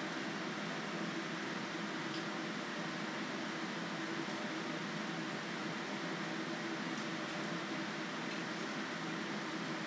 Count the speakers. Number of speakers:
0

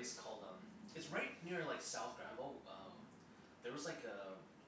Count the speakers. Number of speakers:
1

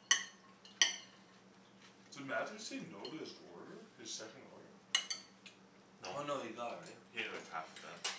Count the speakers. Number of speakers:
2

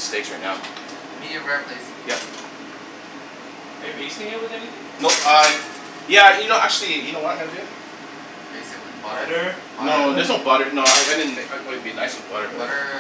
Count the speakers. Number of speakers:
3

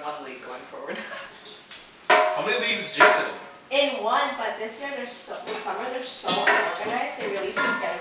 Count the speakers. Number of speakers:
3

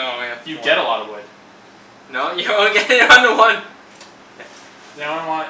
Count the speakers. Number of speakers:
2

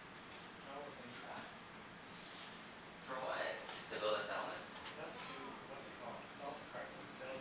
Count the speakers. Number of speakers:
2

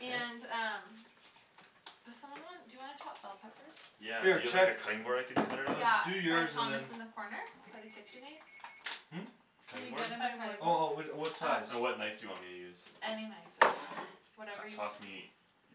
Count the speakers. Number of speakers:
3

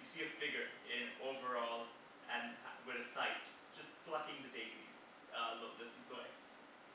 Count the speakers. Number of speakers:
1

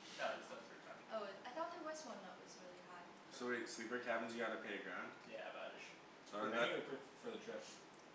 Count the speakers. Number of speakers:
4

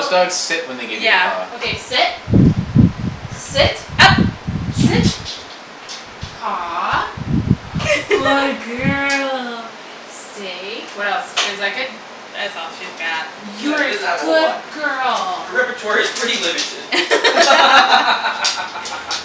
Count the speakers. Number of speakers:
4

